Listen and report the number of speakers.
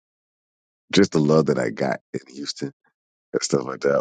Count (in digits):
1